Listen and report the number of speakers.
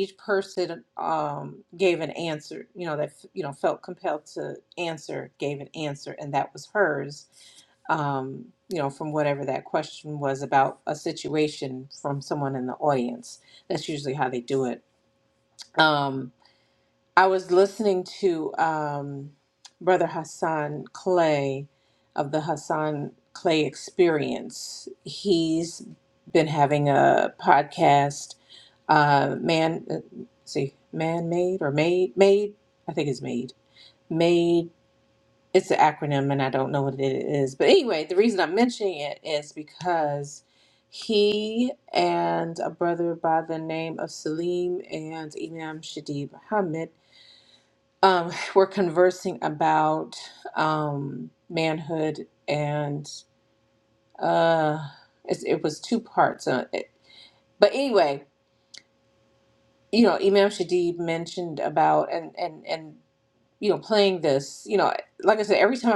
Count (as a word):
one